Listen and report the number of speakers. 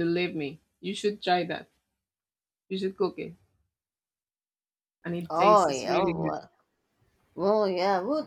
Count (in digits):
2